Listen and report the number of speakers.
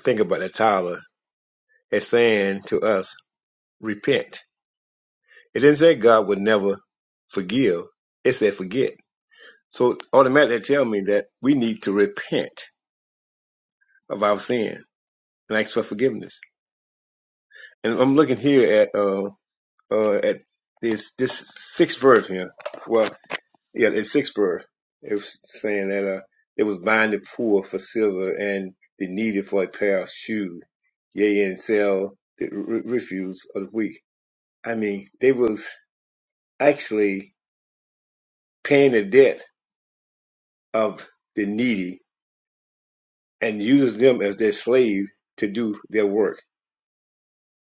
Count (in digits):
1